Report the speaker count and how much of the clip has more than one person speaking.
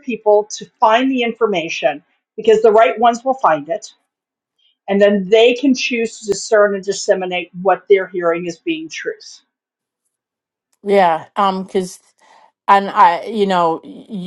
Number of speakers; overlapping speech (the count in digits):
2, no overlap